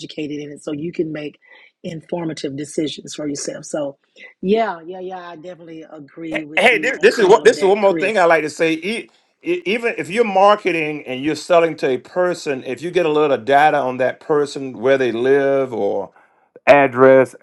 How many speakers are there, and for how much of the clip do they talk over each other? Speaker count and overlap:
two, about 9%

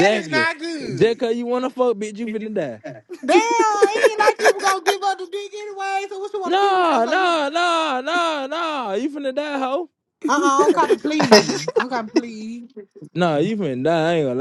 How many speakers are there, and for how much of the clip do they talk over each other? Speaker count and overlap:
two, about 14%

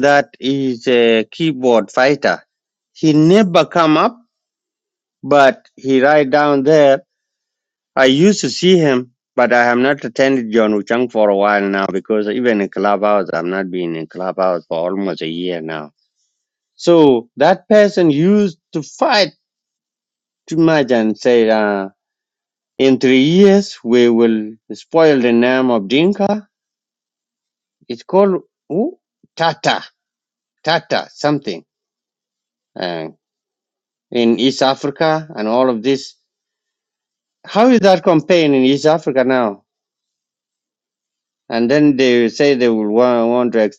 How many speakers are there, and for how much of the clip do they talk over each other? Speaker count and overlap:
one, no overlap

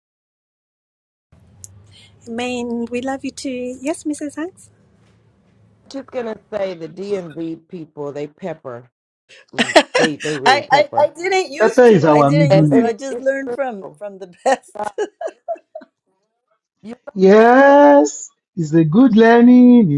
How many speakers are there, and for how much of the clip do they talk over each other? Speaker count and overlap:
four, about 16%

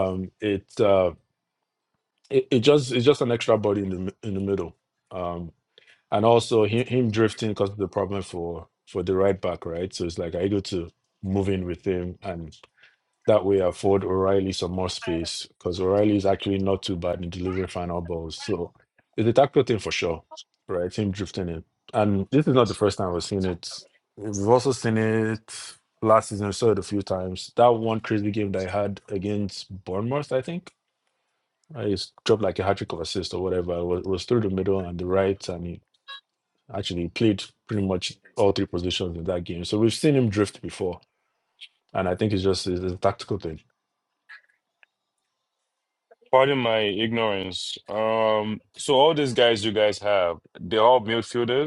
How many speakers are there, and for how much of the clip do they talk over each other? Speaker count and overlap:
two, no overlap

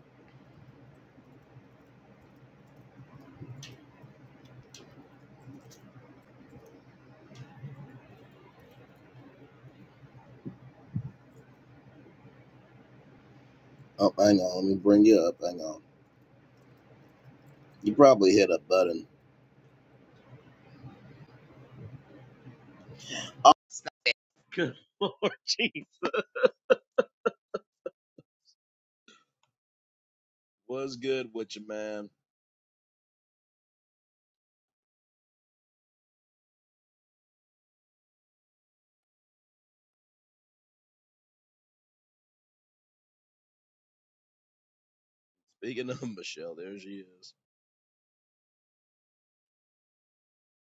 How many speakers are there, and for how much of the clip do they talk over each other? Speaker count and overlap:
one, no overlap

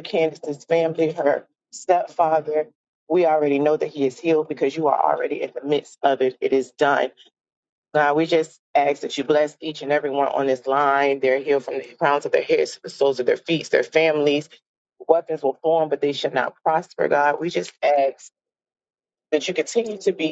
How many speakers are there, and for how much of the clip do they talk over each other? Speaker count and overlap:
one, no overlap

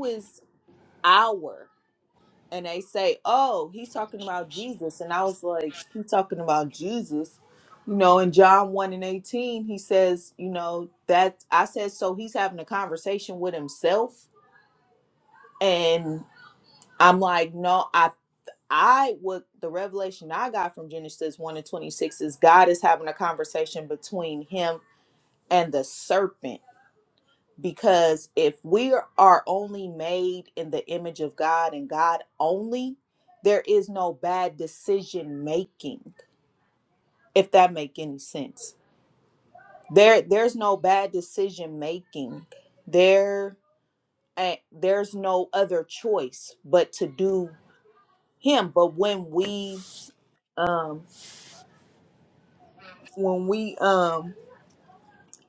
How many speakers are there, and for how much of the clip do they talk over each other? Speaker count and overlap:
one, no overlap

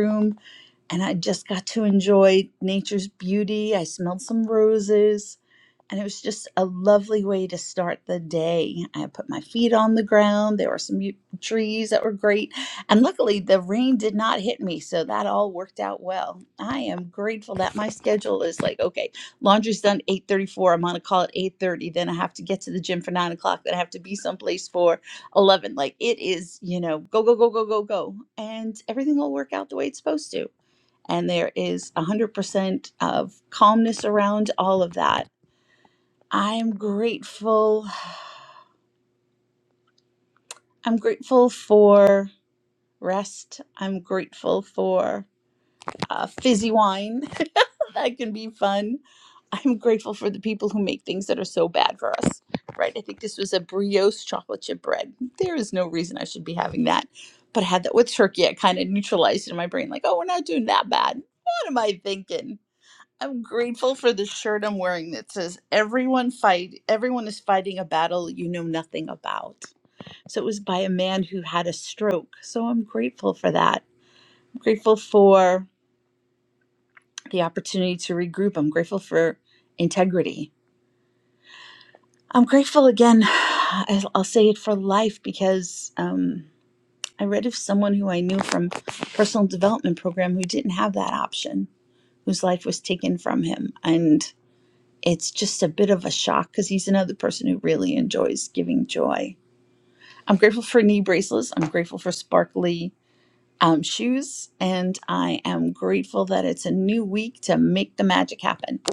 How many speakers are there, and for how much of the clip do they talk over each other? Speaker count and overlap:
one, no overlap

